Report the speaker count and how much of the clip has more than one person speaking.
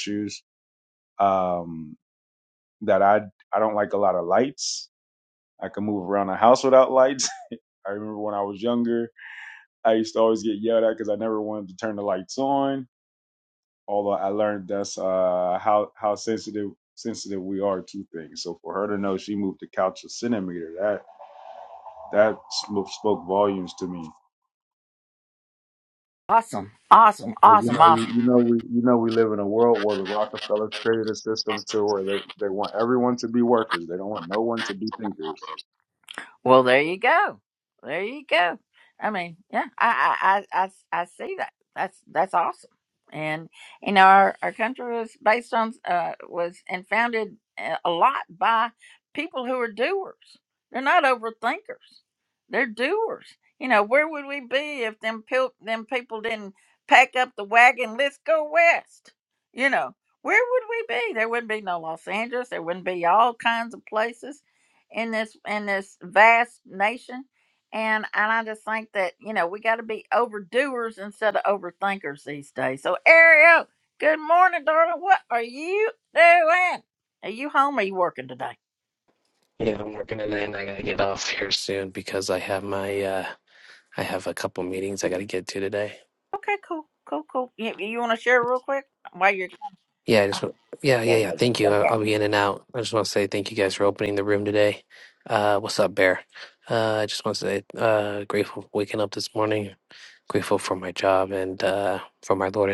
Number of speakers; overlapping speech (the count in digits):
3, about 1%